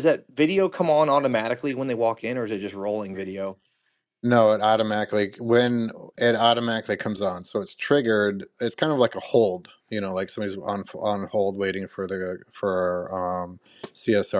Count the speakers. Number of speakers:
2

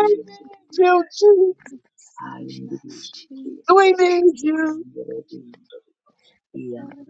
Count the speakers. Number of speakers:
3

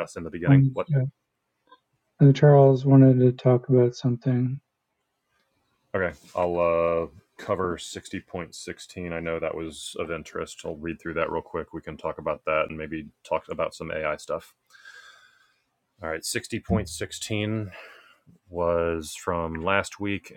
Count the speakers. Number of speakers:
2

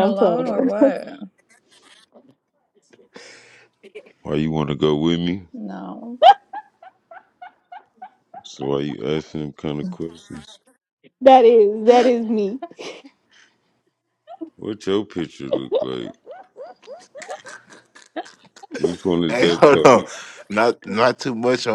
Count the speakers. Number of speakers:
4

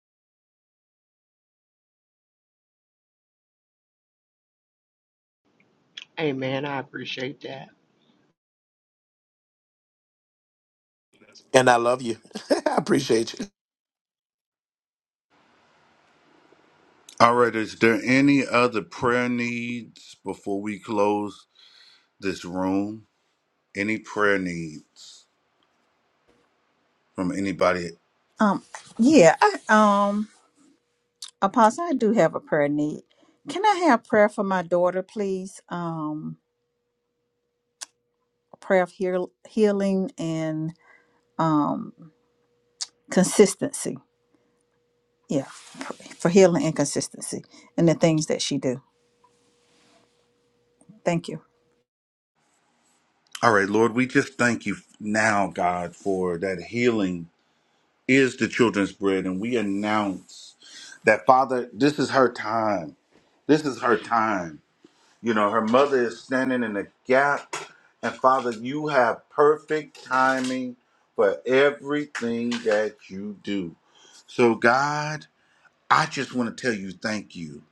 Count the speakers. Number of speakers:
4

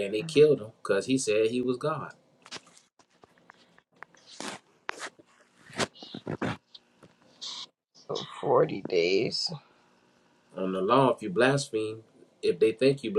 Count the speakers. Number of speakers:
2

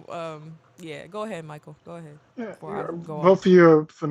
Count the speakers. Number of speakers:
2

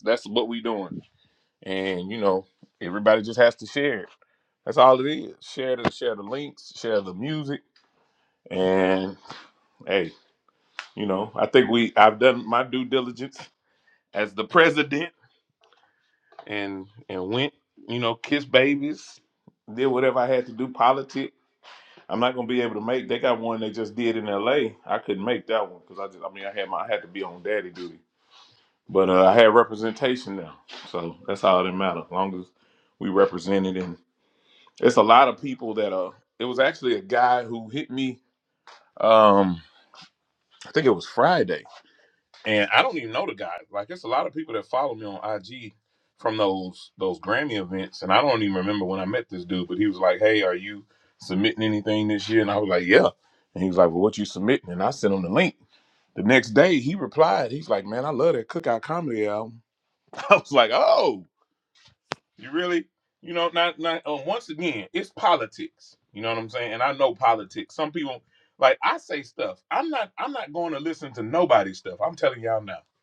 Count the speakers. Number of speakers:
1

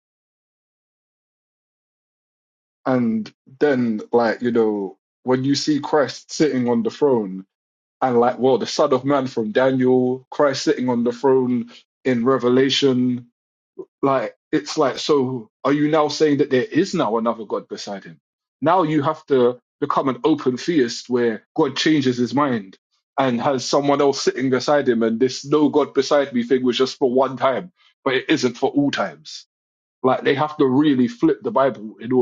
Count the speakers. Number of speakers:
1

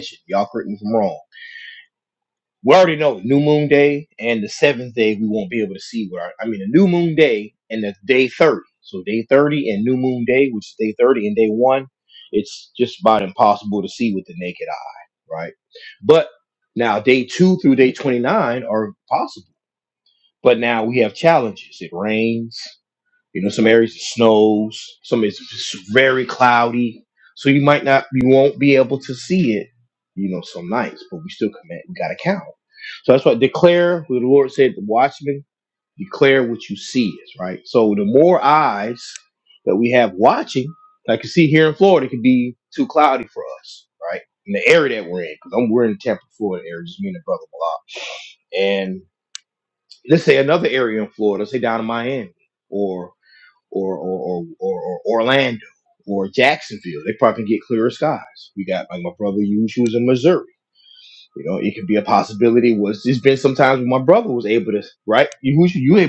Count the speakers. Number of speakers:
1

